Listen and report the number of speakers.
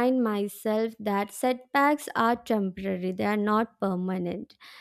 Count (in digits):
1